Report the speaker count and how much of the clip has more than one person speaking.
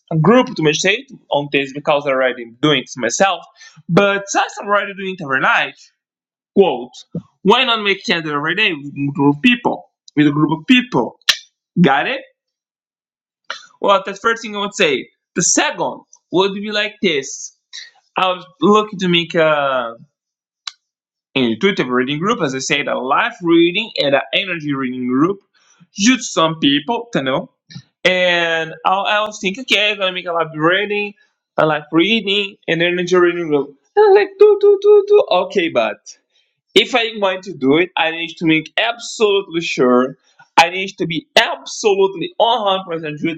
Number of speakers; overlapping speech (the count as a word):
one, no overlap